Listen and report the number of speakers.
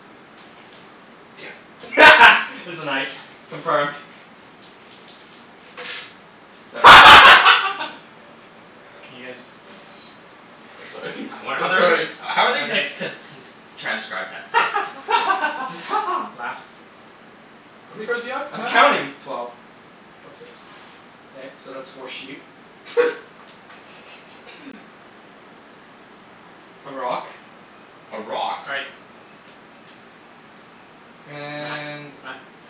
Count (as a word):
four